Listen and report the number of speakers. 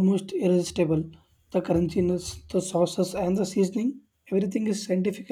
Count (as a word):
one